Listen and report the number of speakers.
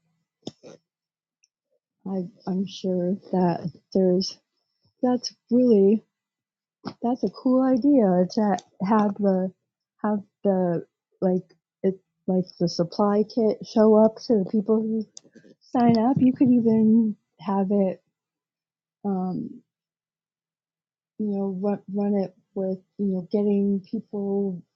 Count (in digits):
1